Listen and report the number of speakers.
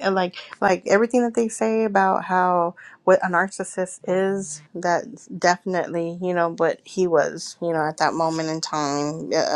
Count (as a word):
one